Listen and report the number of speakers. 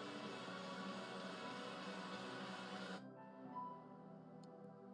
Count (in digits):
0